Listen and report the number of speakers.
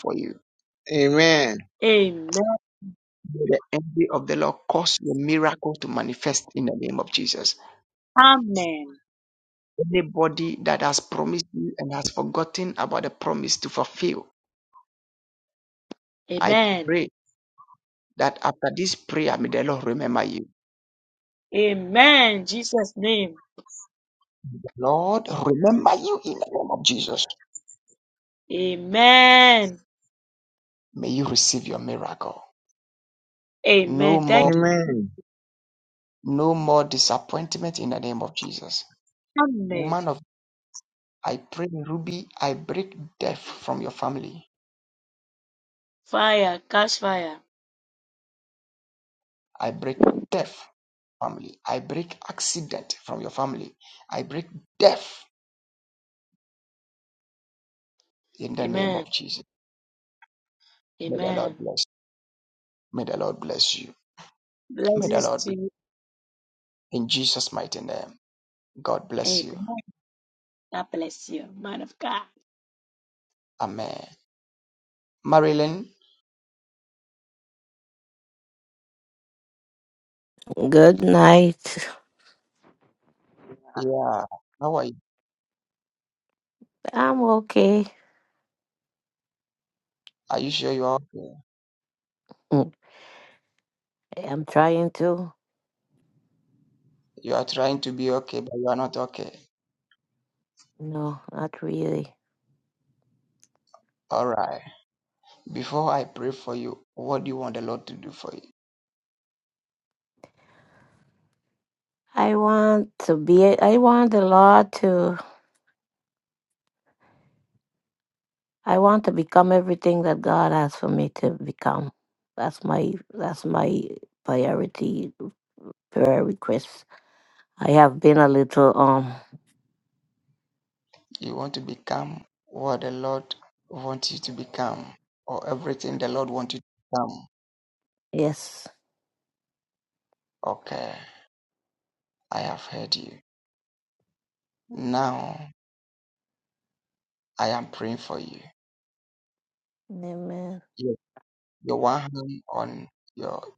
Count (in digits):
4